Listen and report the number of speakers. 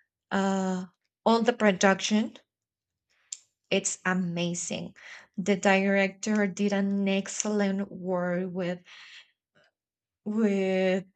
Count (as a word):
one